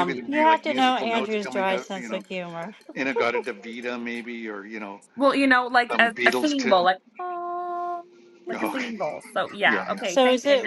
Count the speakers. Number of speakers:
three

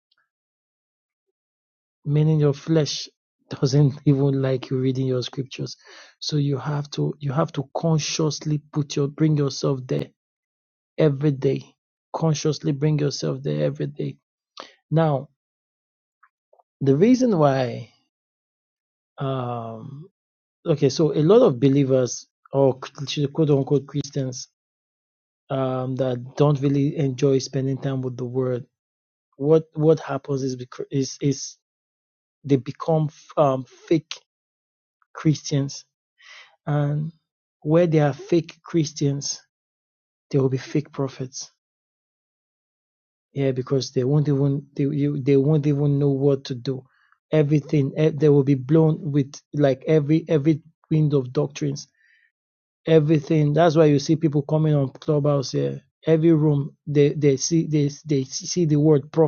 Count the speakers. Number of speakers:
one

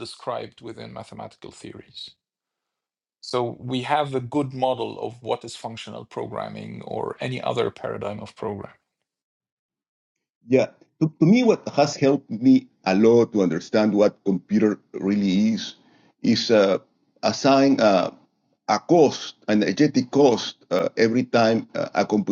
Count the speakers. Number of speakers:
two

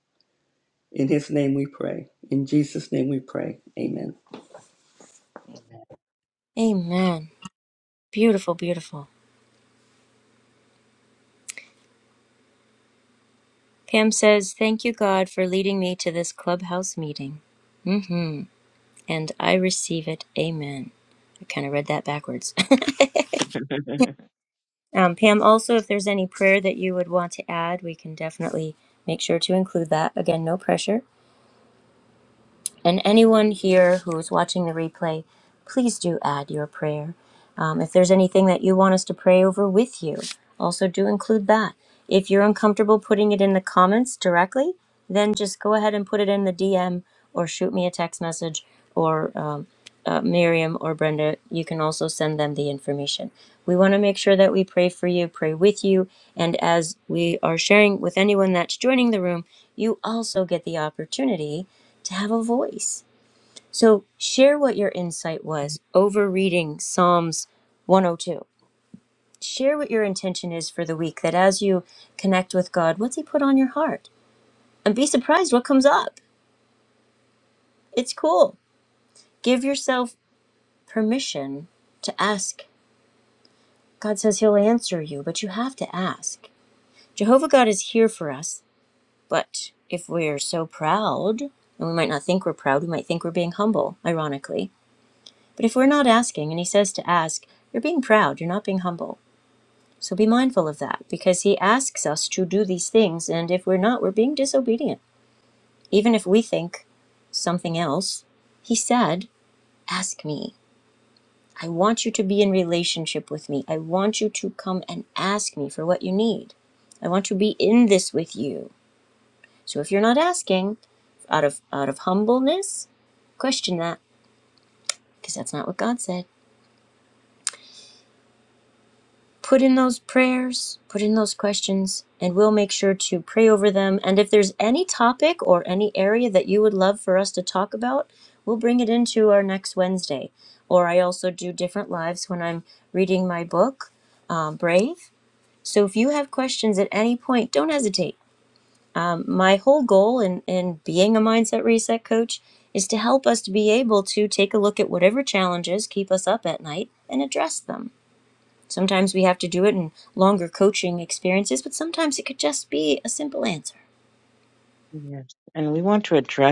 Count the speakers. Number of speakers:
three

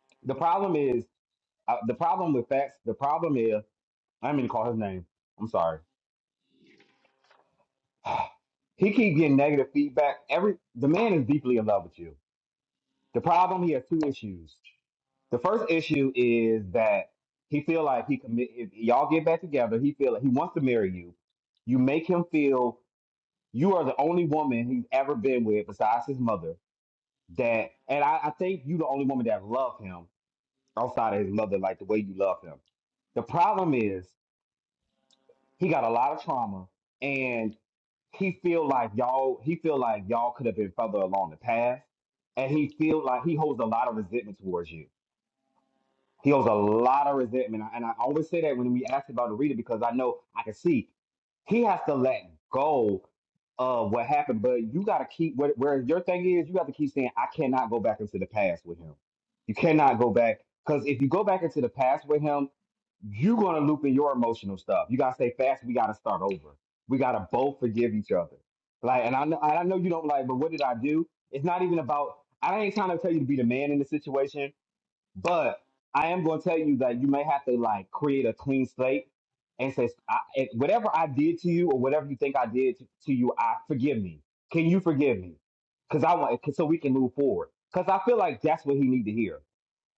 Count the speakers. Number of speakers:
one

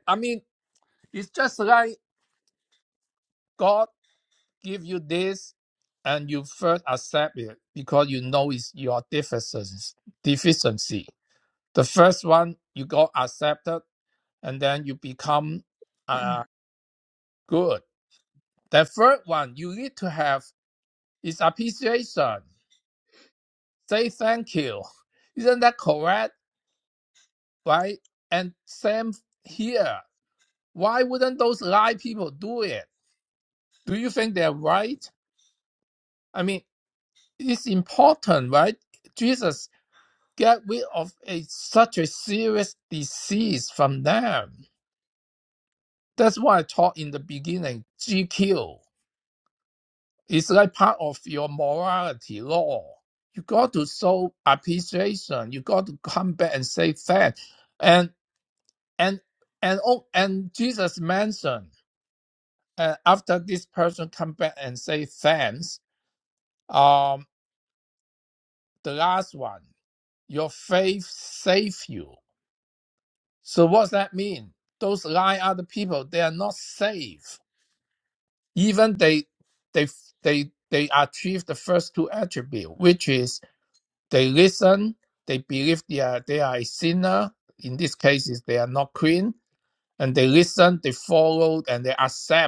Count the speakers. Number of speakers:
one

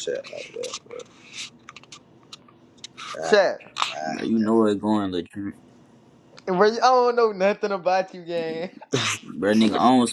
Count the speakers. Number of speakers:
three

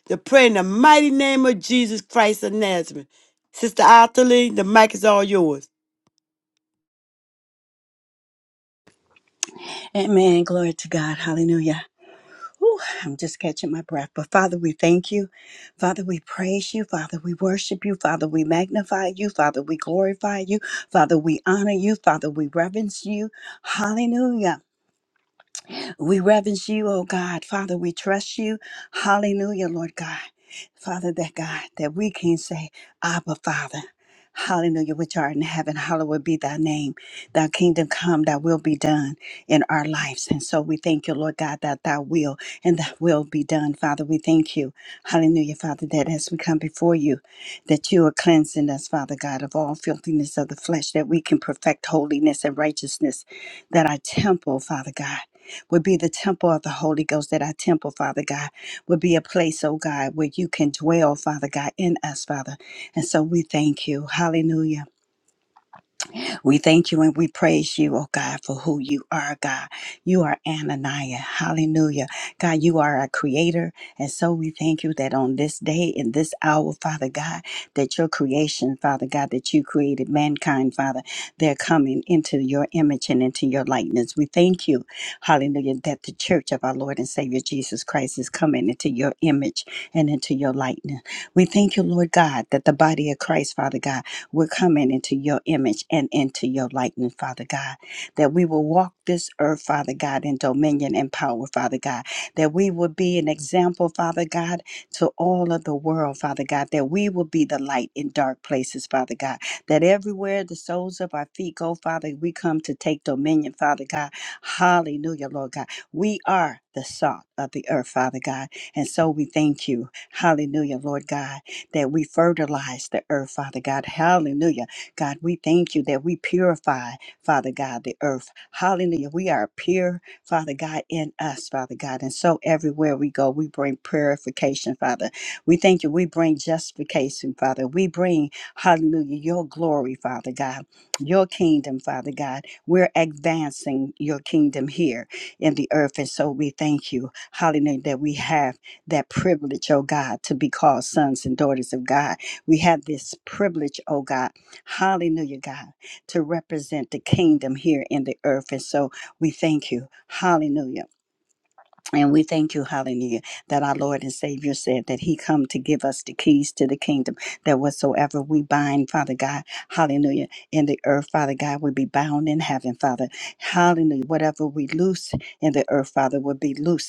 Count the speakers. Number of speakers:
two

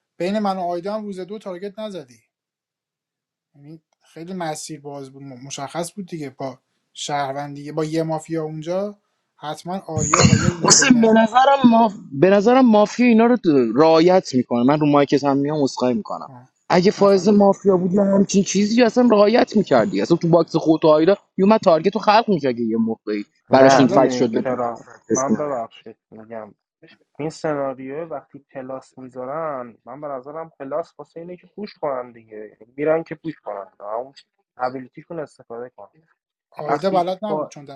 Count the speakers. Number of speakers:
three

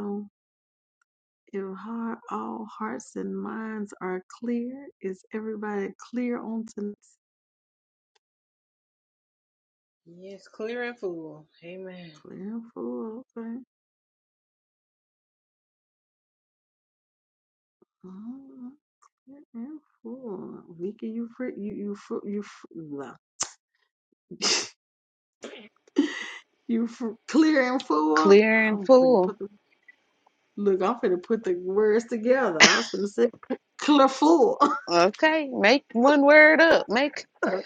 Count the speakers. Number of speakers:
three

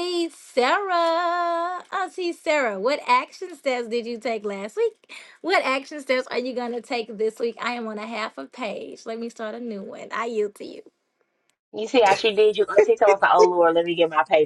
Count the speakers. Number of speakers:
two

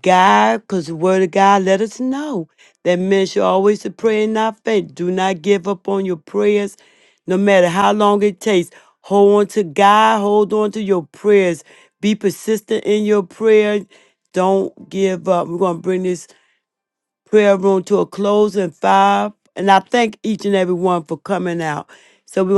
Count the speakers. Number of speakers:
one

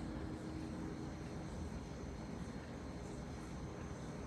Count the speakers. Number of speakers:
zero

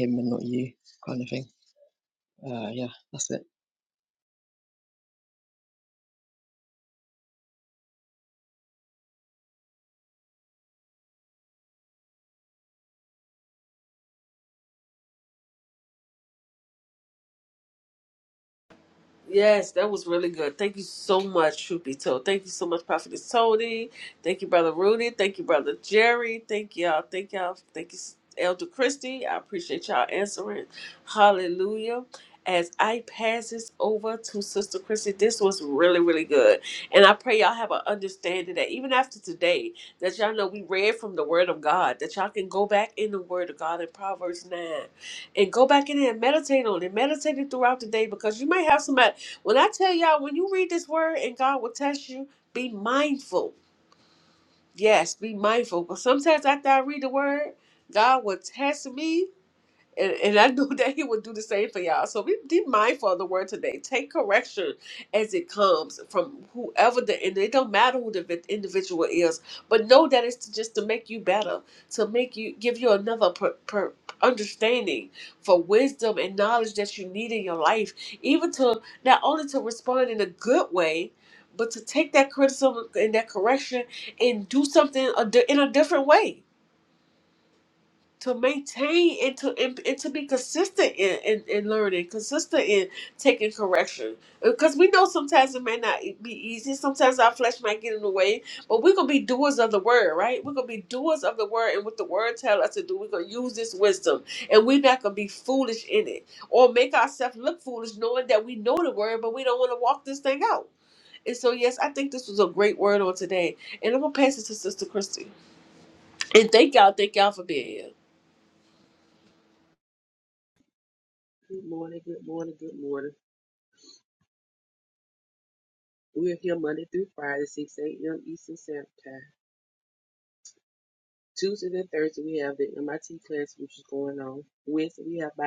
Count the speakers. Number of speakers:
three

